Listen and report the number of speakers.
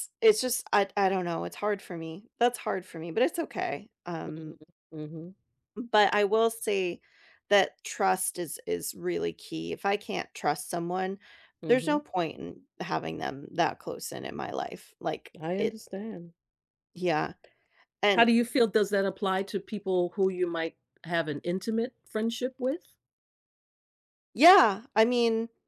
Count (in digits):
2